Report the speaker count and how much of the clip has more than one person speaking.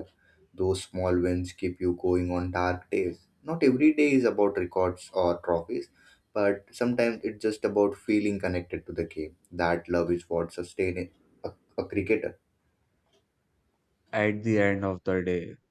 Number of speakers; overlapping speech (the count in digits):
2, no overlap